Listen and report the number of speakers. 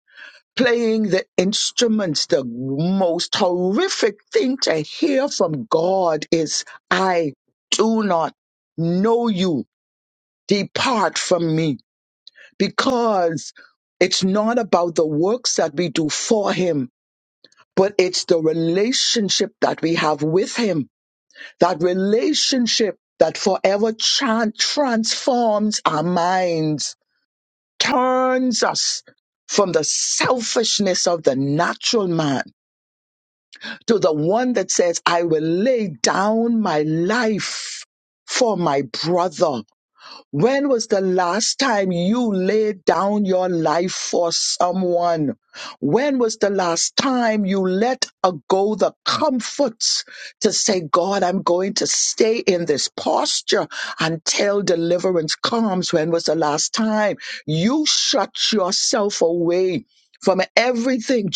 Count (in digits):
1